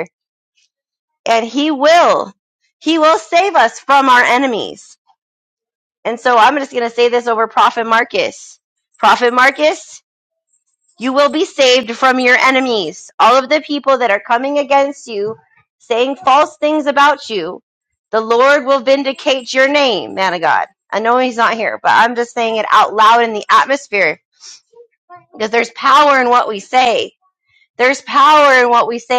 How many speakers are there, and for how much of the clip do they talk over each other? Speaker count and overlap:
1, no overlap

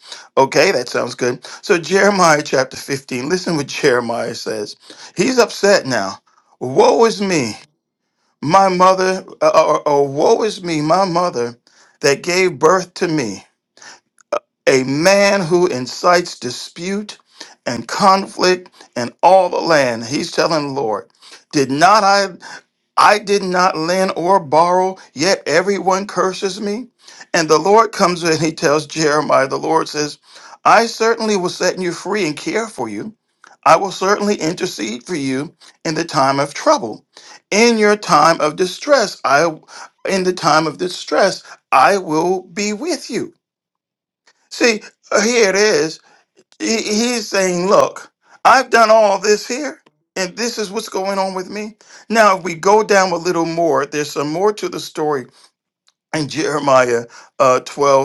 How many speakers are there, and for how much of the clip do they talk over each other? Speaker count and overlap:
1, no overlap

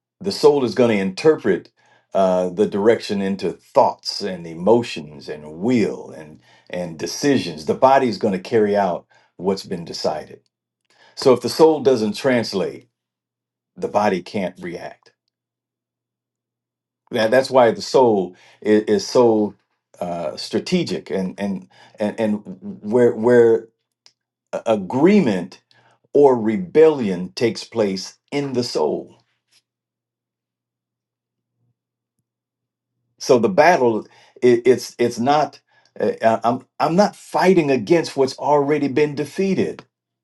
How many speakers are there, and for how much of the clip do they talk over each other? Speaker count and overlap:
1, no overlap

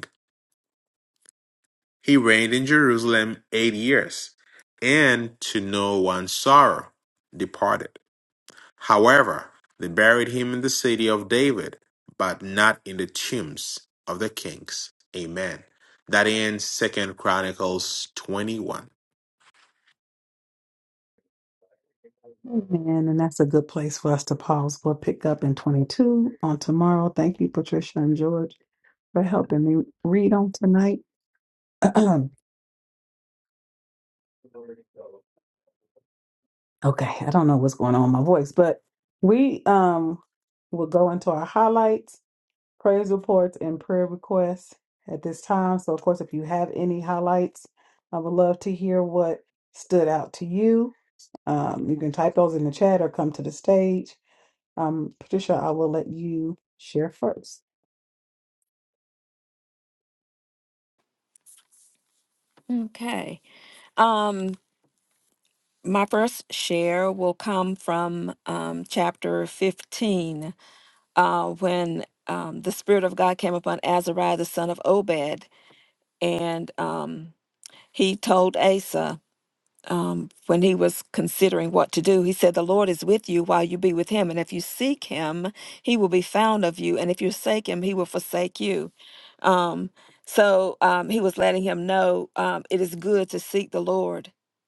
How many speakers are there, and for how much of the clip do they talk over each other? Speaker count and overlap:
3, no overlap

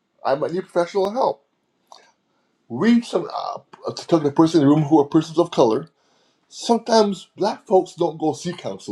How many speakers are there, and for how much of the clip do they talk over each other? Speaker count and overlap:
1, no overlap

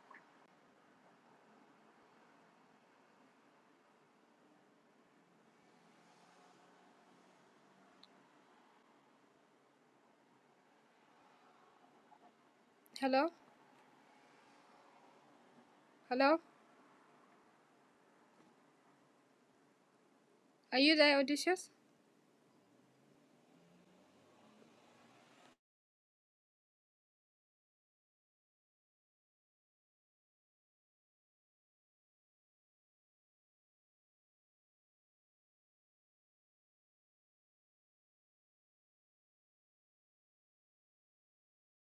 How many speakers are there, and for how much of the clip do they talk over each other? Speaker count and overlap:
1, no overlap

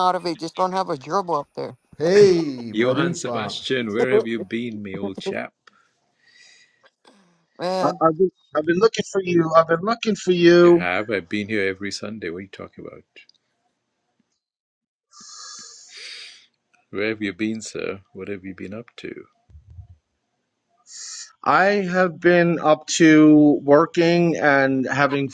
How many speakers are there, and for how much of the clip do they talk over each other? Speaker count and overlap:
4, about 5%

